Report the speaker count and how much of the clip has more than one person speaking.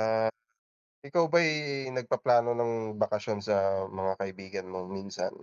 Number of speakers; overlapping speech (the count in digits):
1, no overlap